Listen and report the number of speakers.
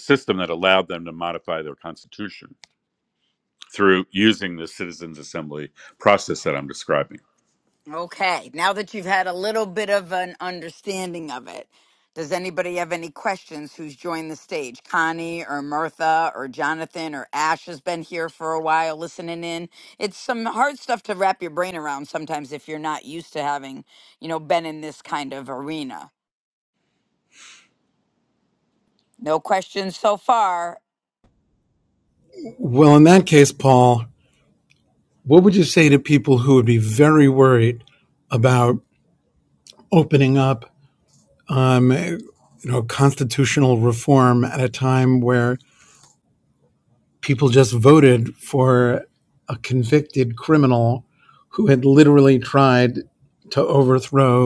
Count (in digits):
3